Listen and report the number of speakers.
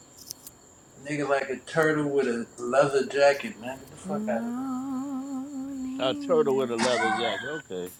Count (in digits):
3